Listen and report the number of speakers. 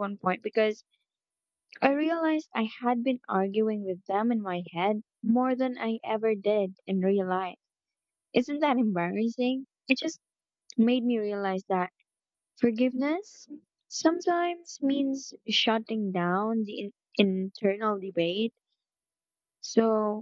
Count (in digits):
1